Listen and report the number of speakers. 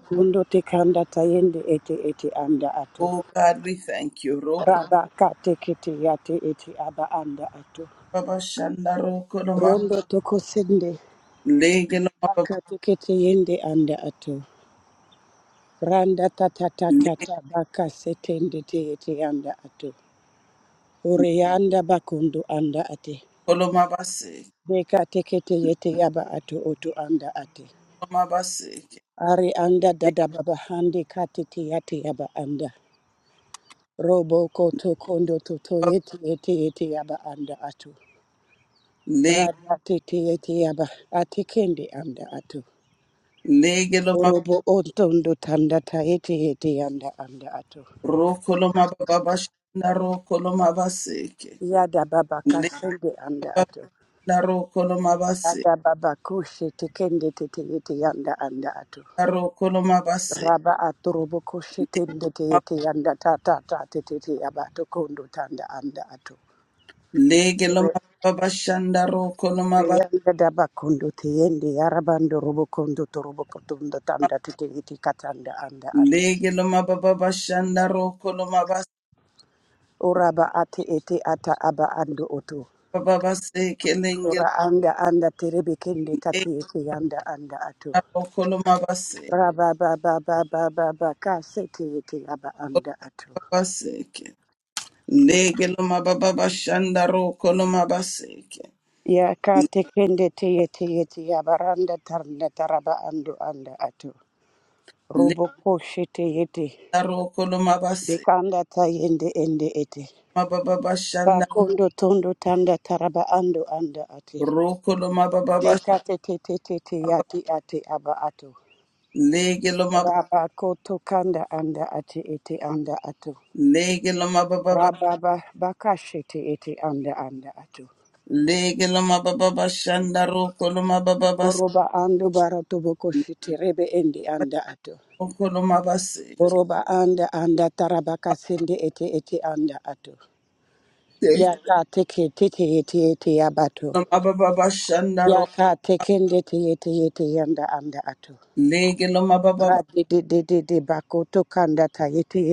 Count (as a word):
two